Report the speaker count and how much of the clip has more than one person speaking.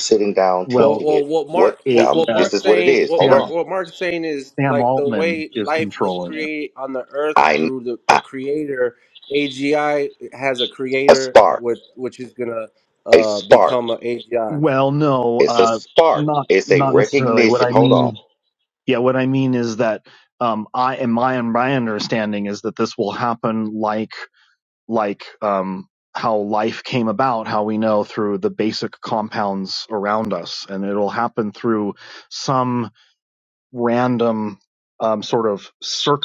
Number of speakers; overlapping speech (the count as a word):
three, about 24%